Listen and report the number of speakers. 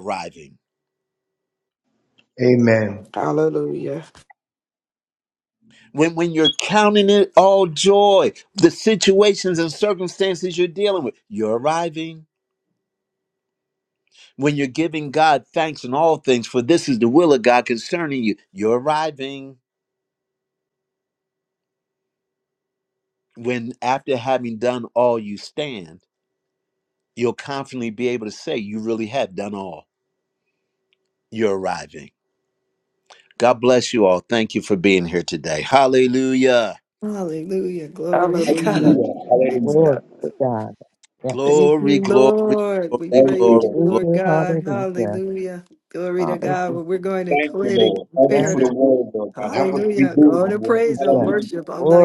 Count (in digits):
5